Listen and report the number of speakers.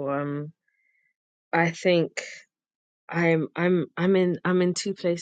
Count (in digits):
1